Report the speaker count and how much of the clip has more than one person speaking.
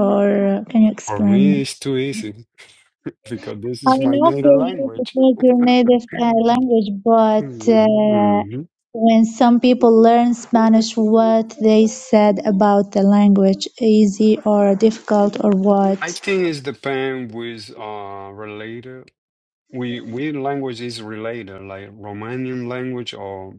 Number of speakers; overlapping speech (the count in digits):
2, about 13%